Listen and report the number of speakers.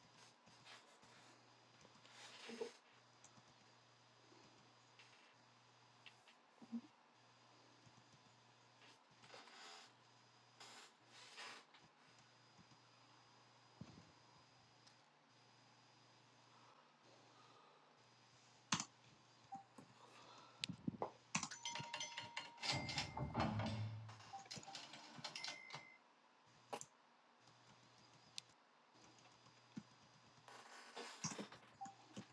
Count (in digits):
0